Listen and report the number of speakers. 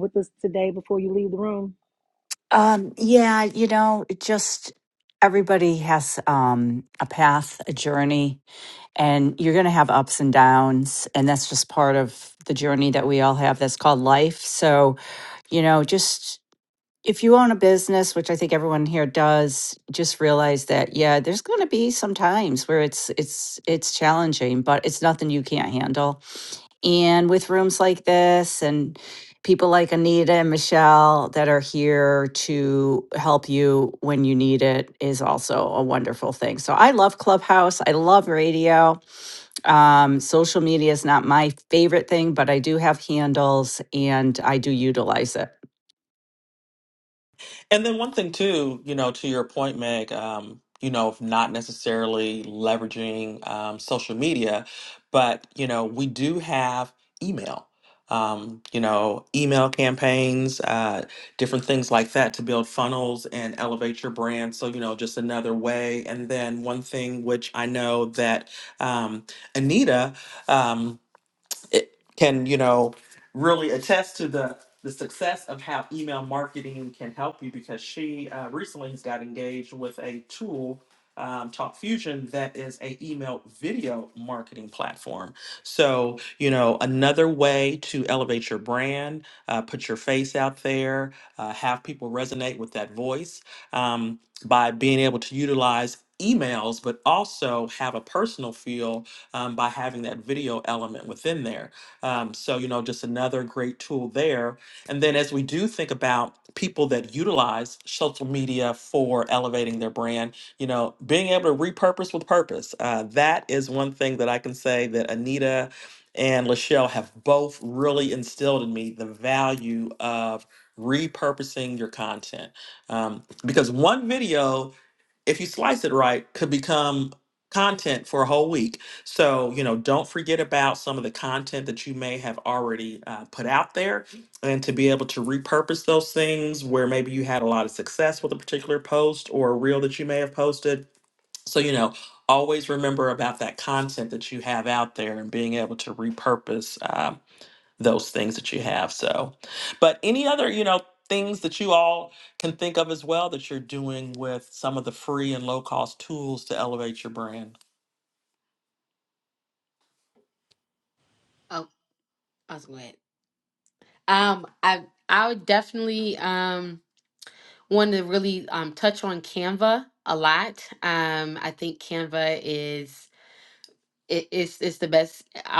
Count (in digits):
4